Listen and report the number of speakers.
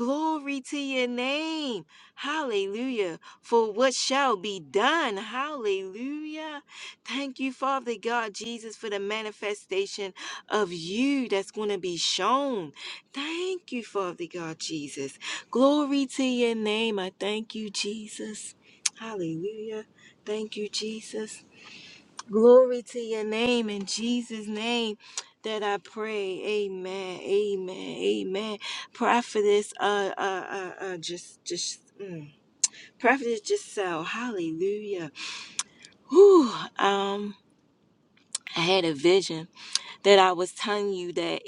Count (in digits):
1